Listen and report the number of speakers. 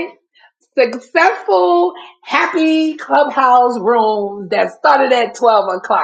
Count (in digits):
1